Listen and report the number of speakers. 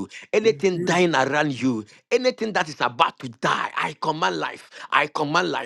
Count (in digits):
1